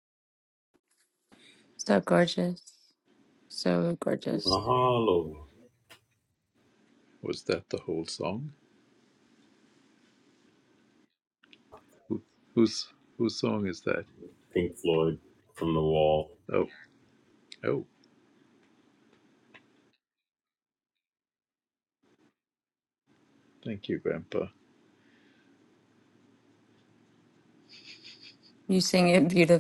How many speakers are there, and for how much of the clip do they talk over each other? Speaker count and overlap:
3, about 1%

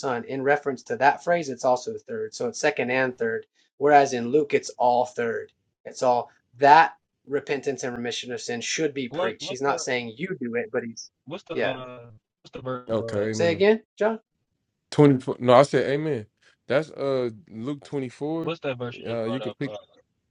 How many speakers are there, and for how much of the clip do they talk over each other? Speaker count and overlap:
3, about 12%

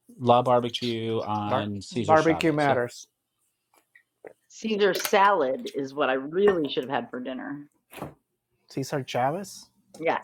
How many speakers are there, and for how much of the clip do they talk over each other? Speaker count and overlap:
3, about 8%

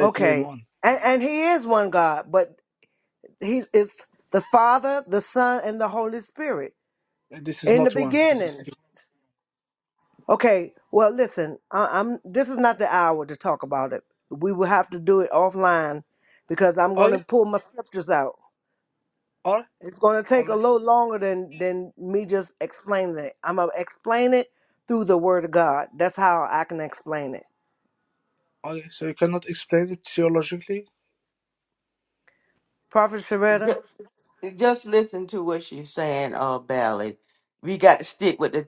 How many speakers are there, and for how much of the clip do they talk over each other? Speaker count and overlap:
3, about 5%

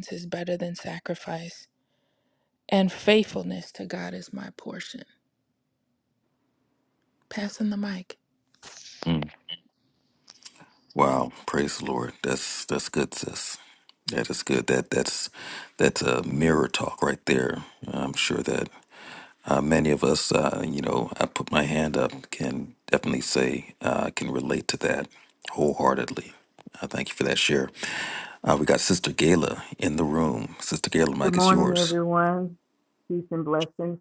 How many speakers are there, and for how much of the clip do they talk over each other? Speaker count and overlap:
3, about 2%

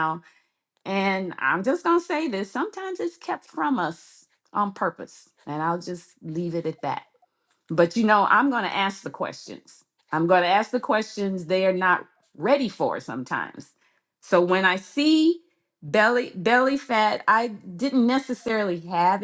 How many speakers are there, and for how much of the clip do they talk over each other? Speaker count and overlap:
1, no overlap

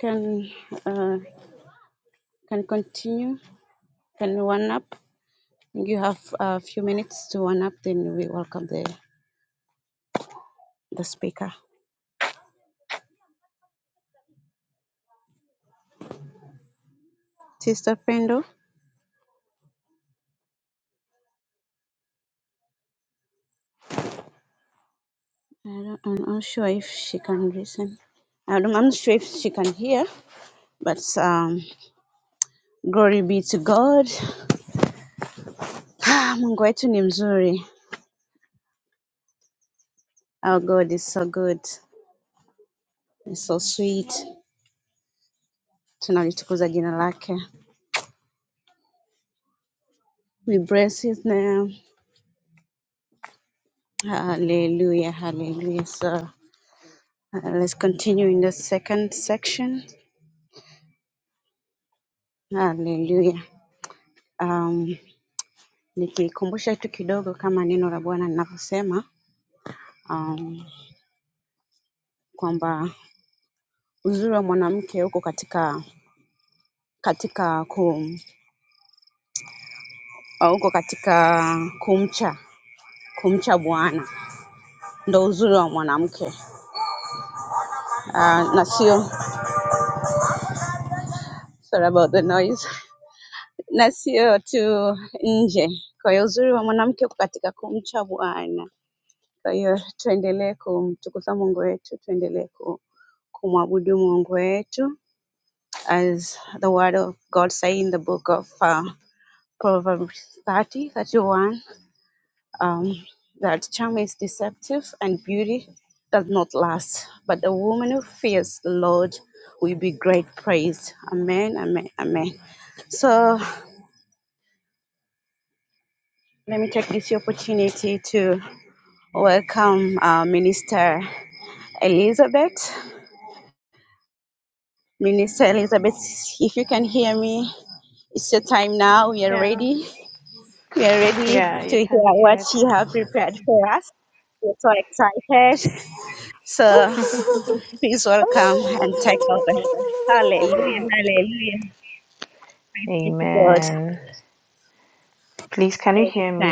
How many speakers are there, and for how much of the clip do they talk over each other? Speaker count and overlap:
2, about 2%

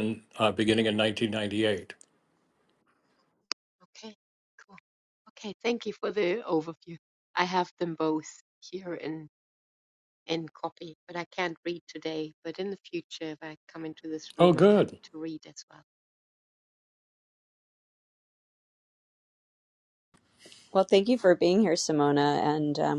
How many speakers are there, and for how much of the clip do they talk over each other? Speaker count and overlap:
3, about 2%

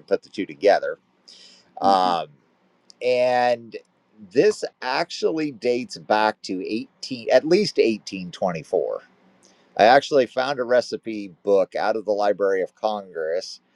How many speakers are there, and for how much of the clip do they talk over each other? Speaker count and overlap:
1, no overlap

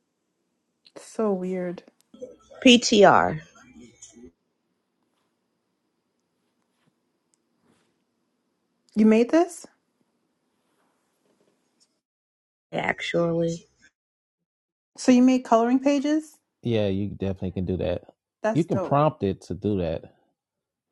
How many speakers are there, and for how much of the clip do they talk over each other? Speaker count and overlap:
3, about 2%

